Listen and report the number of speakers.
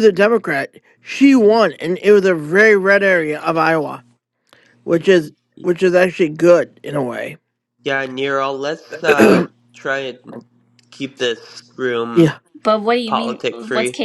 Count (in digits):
3